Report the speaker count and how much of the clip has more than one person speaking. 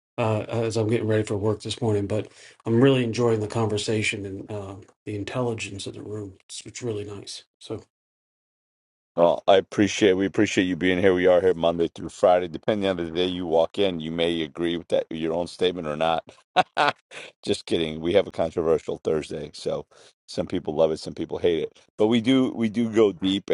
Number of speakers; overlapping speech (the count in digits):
2, no overlap